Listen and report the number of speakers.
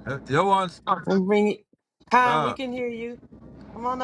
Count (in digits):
2